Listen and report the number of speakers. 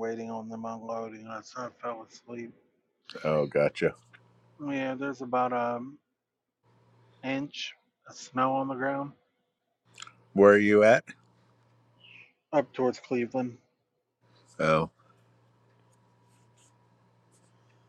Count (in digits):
2